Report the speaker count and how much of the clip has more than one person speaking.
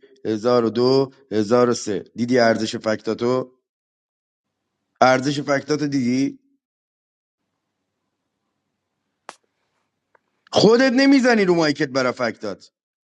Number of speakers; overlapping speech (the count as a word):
one, no overlap